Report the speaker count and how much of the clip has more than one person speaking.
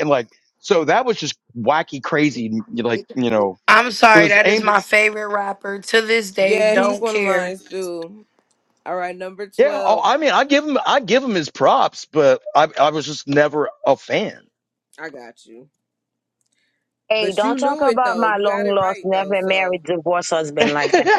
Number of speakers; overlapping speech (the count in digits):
4, about 23%